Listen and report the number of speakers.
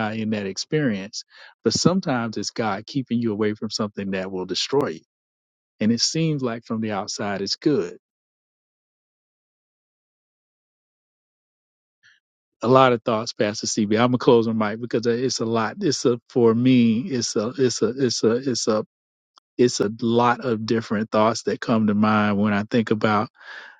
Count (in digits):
1